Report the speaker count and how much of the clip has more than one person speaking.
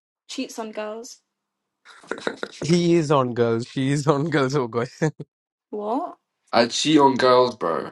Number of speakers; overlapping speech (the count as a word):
three, no overlap